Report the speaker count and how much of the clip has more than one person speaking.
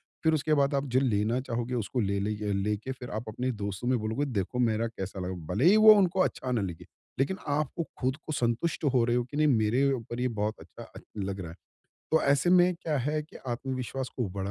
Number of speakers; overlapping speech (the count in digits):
1, no overlap